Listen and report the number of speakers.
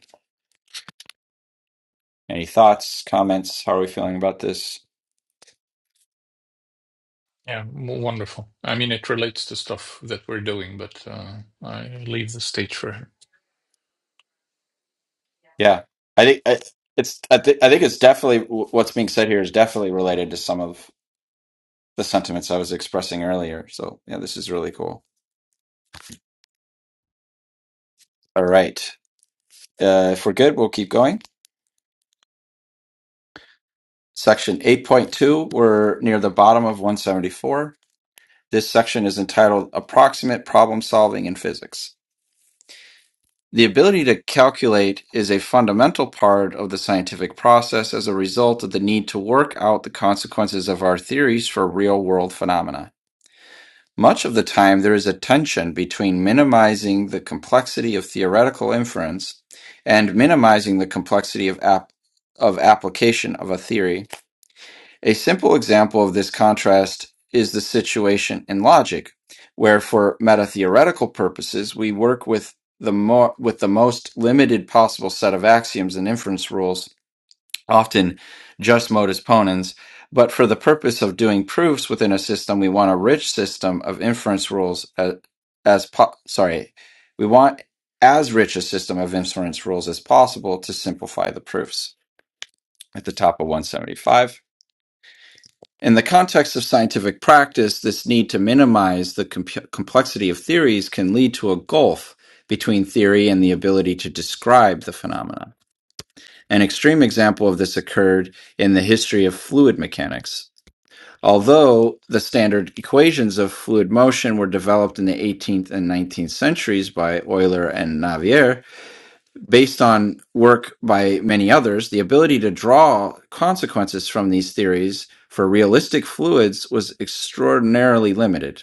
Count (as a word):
two